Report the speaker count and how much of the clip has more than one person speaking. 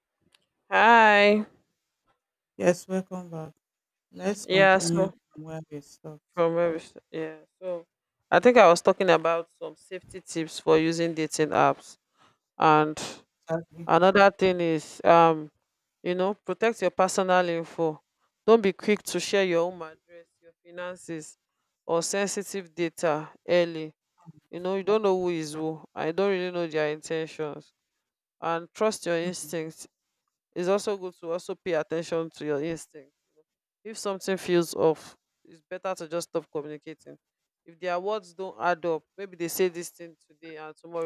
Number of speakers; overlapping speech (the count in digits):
2, about 2%